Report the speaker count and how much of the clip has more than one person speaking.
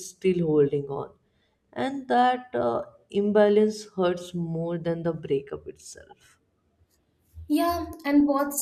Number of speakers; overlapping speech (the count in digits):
2, no overlap